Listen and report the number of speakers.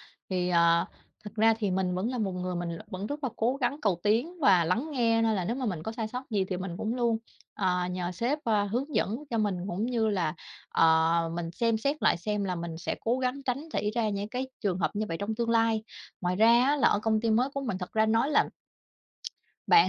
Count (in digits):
1